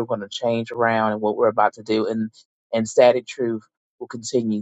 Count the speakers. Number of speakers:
one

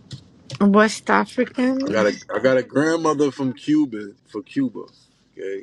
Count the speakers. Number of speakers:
two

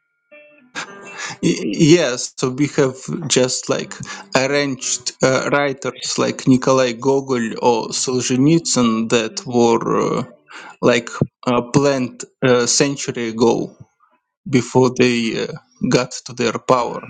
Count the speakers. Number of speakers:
one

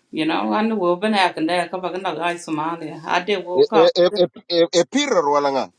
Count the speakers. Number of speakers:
two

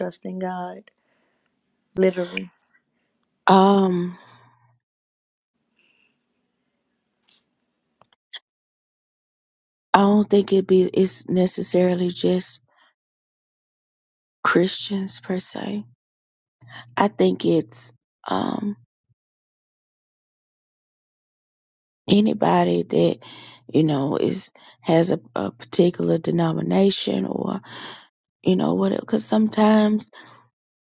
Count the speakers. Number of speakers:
two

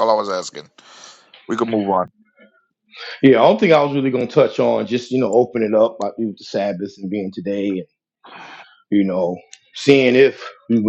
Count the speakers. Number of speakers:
two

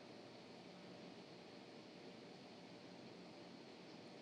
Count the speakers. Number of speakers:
zero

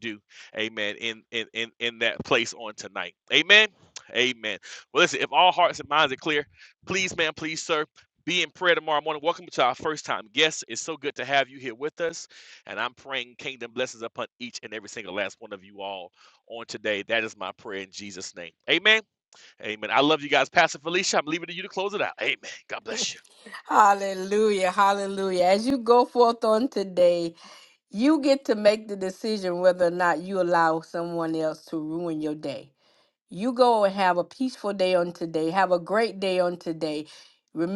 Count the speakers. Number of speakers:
two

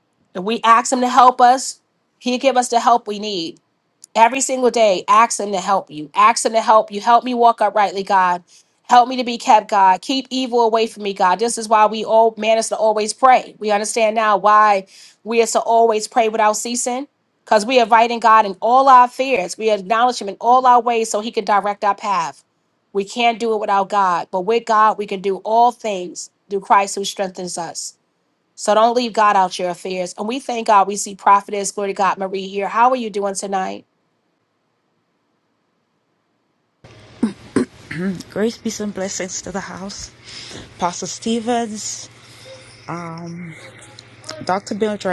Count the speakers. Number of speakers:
two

